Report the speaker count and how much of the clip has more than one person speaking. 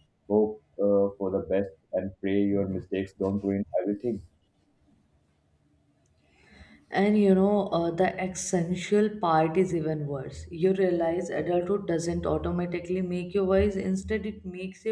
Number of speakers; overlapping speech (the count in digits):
2, no overlap